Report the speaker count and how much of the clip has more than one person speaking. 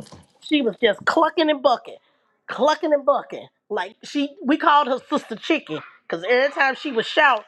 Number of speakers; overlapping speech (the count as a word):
one, no overlap